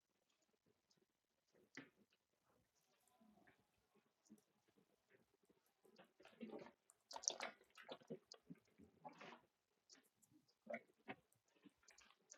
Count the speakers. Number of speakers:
0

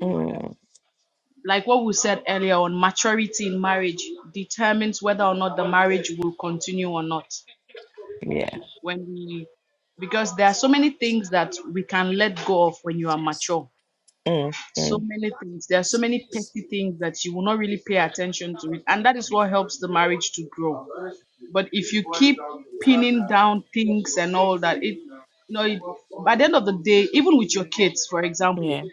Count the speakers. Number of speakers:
2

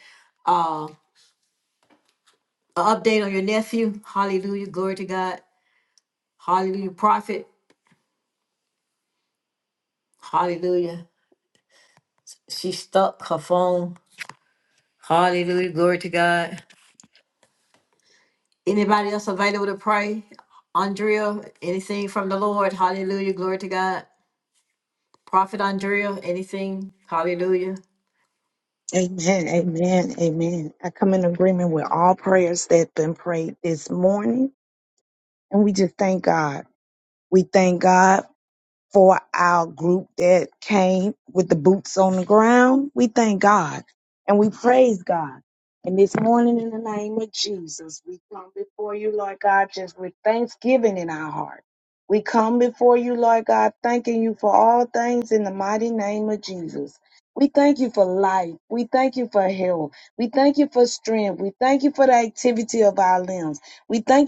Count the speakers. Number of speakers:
2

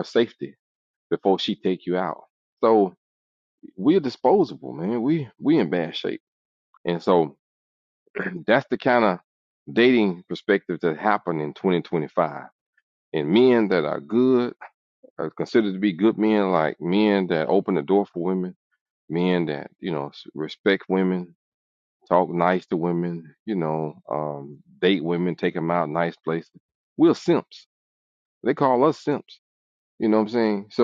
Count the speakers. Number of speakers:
1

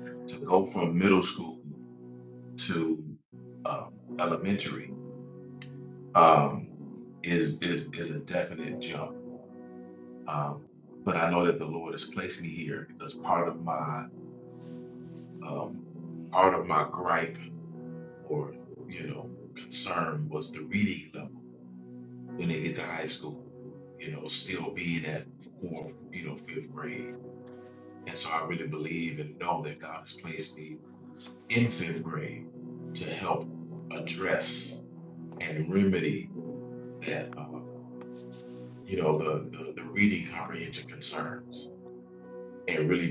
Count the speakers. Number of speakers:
1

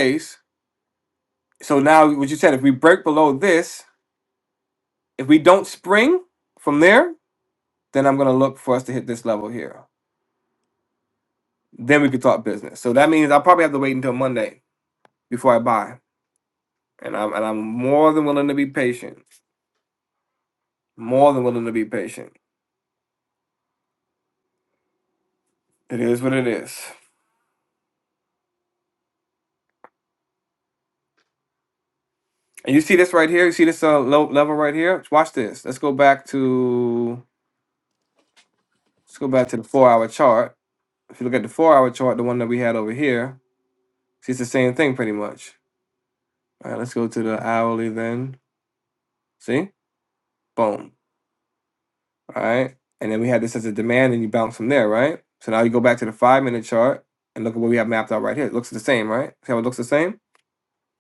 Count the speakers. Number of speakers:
1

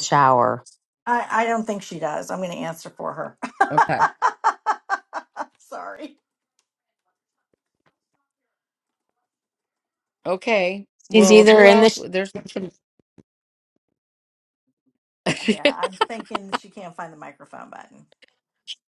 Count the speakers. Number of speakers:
3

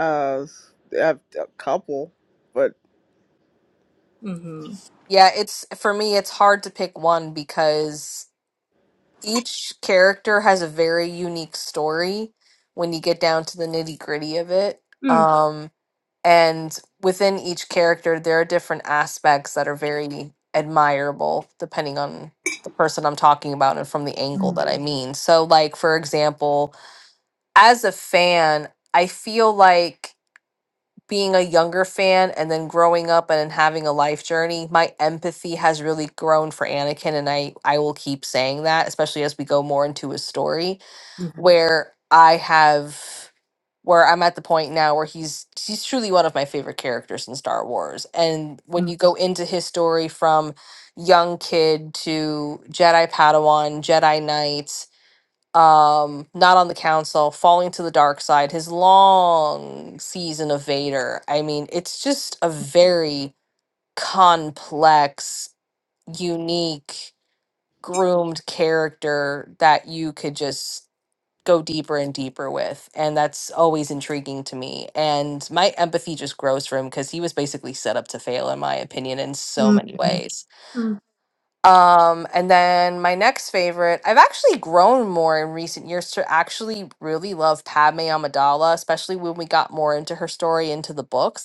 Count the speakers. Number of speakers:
3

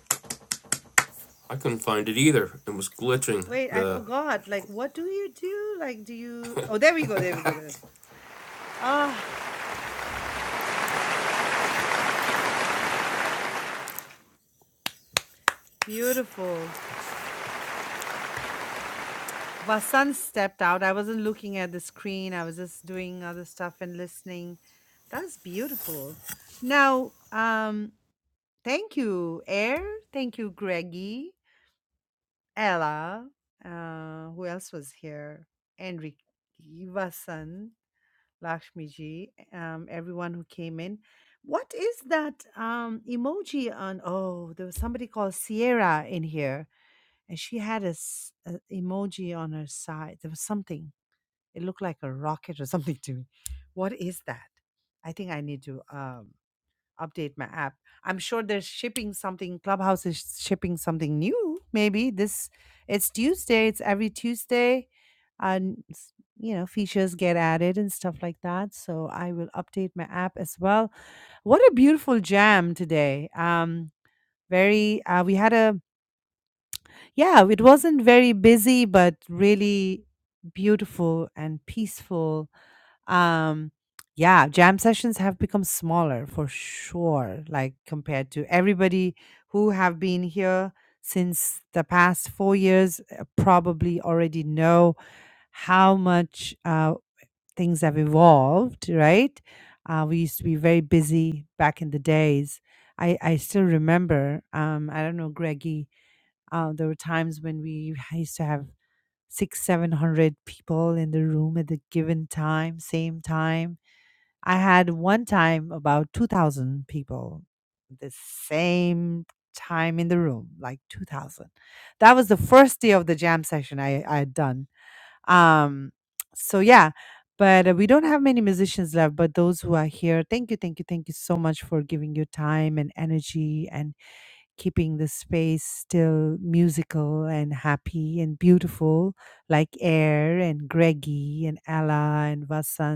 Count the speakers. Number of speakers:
2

